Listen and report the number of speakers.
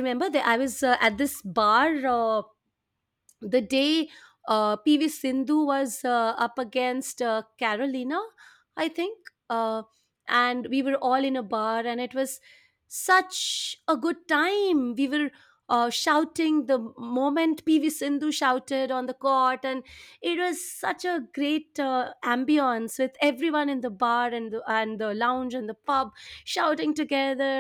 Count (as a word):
one